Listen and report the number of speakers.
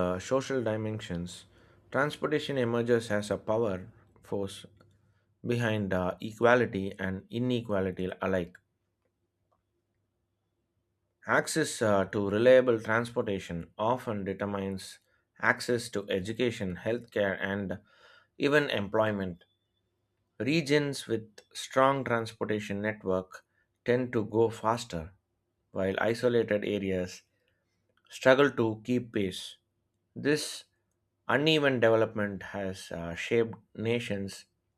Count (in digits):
1